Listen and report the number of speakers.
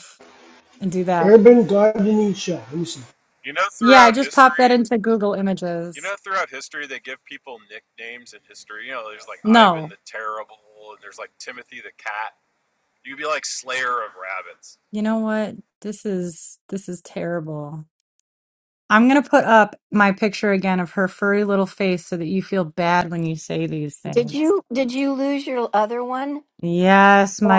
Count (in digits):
4